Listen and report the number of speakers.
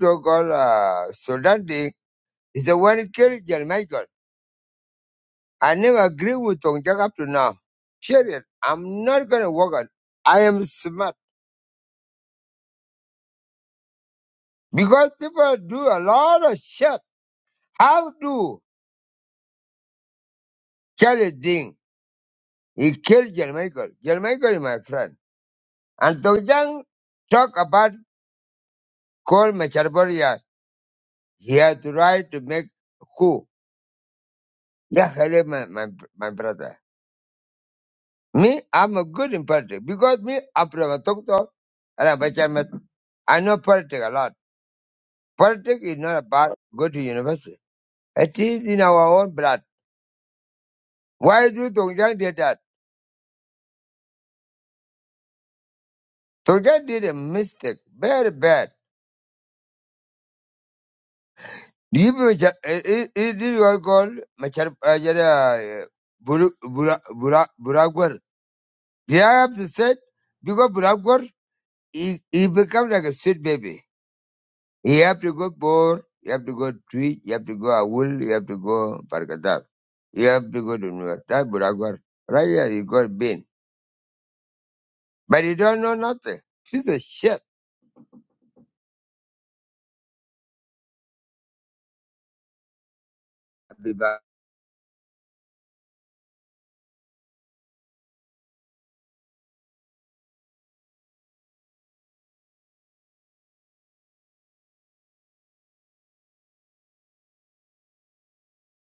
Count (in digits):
1